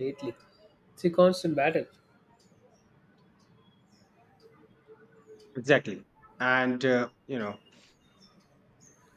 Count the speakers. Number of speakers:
two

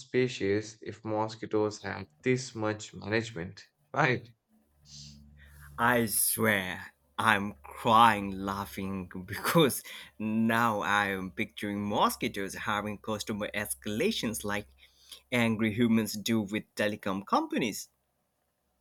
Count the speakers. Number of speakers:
two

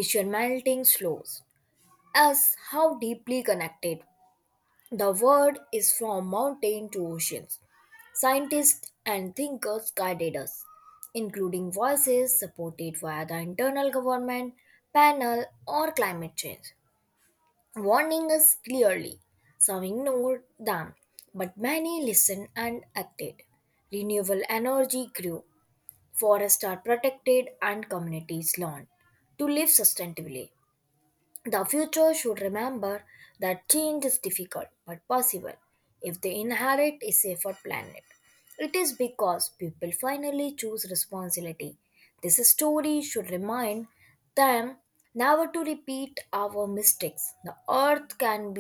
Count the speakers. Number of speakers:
one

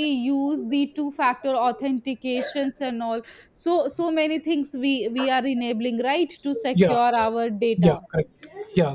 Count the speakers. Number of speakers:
two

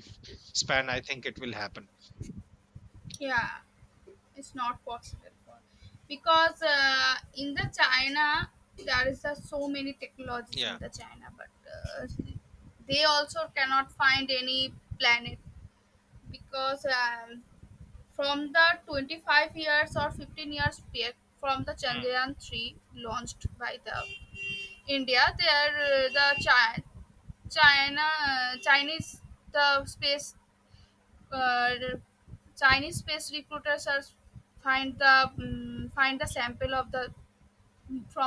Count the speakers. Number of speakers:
two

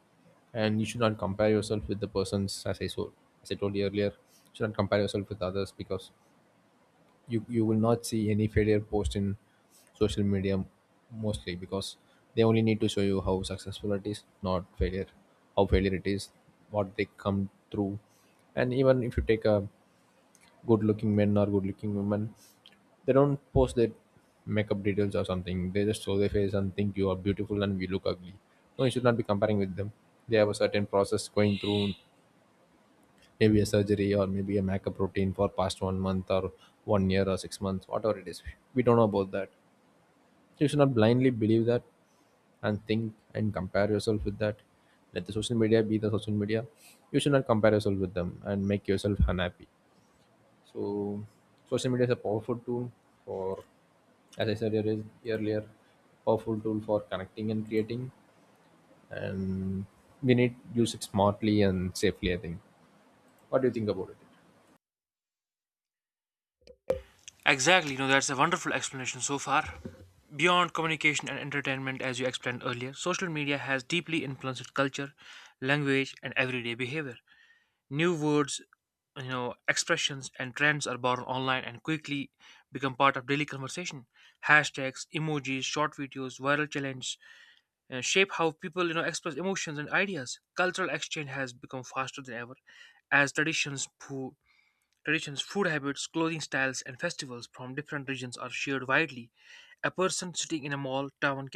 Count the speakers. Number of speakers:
two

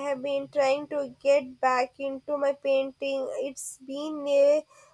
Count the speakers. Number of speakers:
one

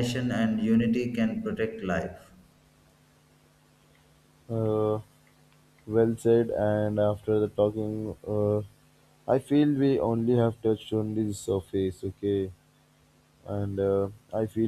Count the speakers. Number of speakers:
two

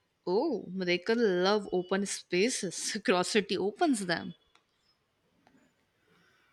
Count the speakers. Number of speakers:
one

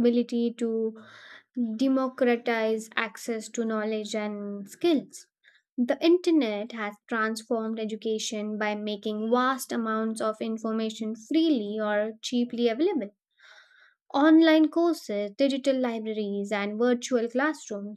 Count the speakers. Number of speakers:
one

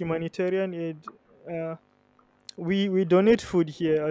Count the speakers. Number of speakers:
one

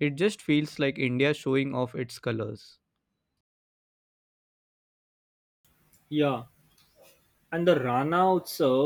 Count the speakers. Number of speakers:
two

